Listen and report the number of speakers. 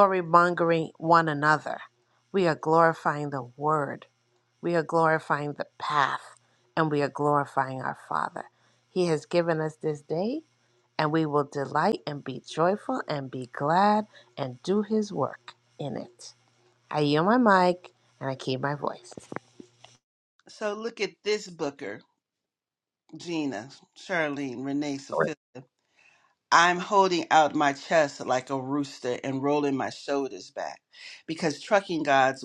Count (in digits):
2